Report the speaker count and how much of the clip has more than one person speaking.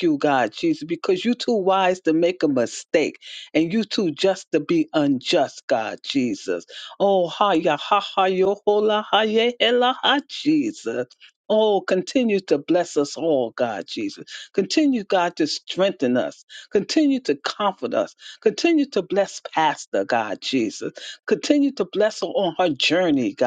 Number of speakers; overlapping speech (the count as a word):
one, no overlap